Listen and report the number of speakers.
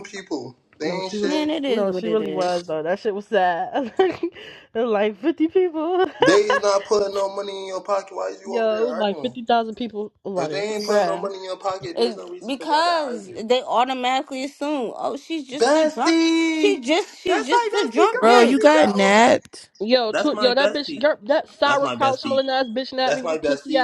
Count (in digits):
4